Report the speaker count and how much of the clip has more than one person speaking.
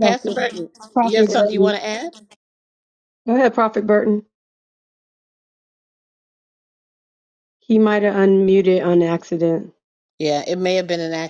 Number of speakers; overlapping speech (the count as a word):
two, about 10%